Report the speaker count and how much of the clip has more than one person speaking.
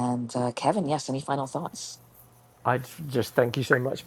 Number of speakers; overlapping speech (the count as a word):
two, no overlap